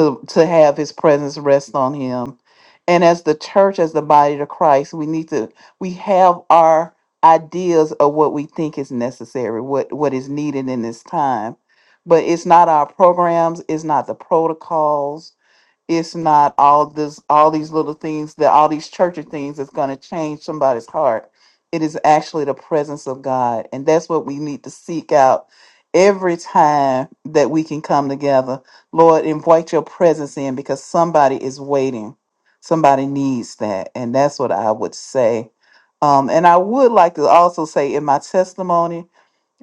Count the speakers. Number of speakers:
one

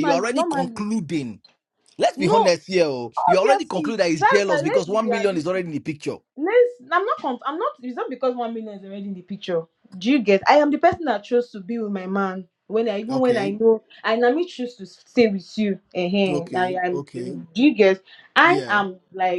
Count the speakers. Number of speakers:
two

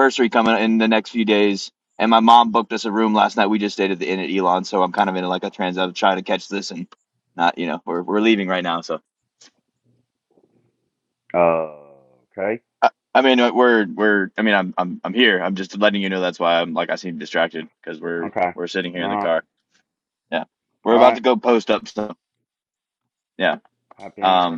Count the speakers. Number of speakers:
two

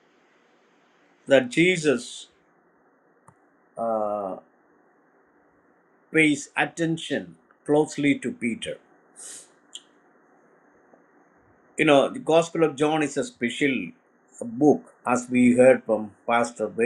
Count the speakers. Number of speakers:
one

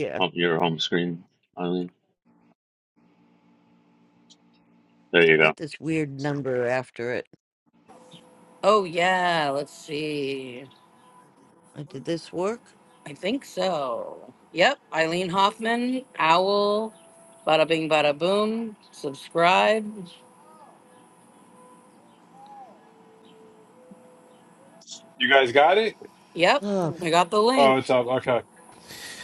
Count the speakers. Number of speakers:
four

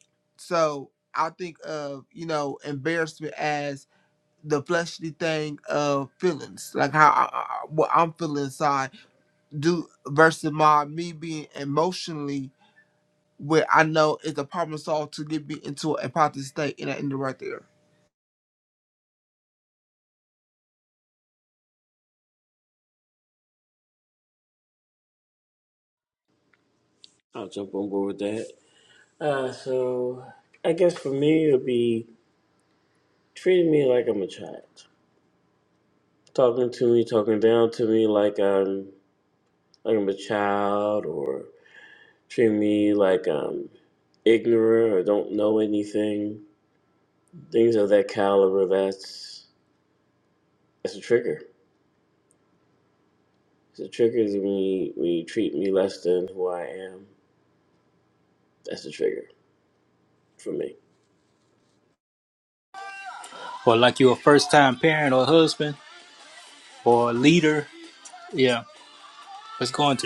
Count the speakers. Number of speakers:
three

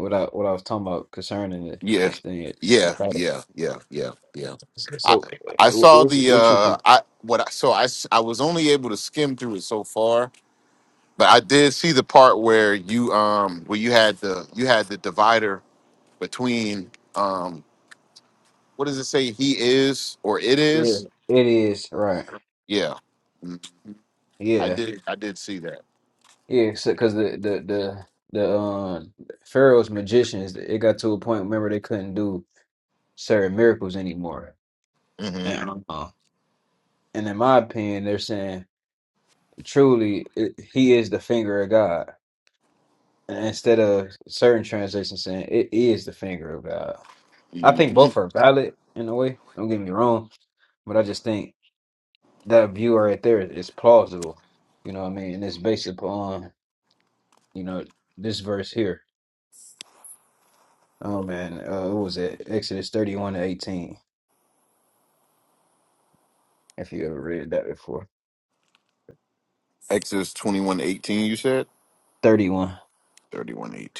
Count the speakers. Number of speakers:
two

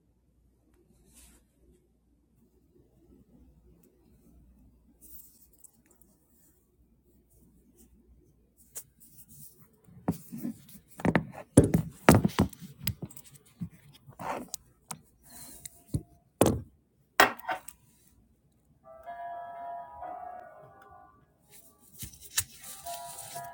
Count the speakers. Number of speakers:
zero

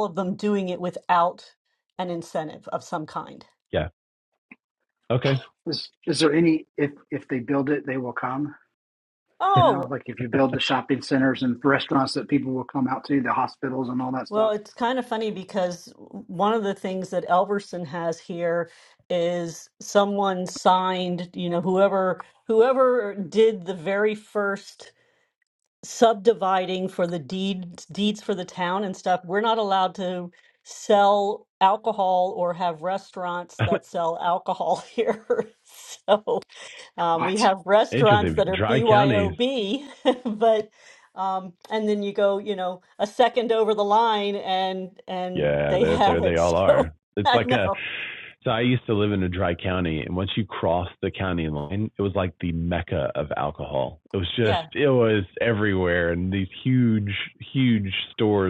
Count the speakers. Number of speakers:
three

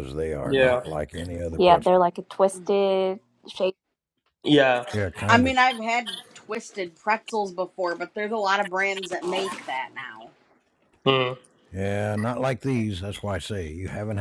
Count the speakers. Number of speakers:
four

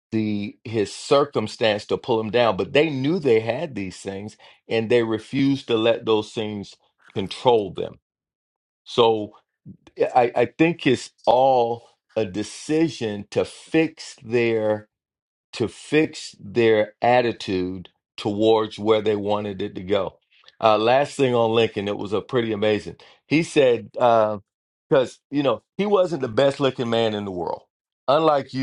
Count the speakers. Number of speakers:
one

